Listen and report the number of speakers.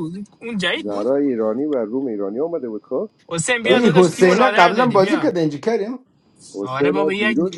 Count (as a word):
three